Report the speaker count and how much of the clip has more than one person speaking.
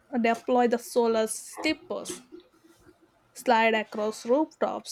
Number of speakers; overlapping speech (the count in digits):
1, no overlap